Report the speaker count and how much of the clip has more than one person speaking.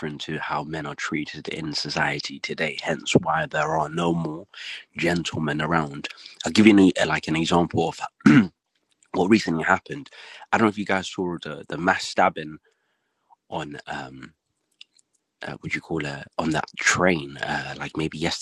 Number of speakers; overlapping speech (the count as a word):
one, no overlap